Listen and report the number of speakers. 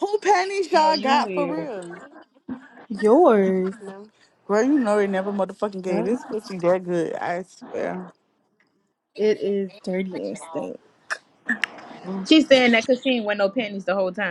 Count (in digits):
3